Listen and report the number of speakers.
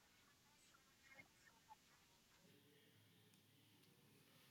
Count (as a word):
zero